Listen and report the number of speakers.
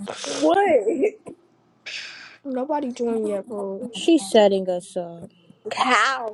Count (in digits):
3